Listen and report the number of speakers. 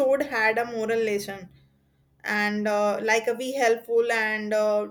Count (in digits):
1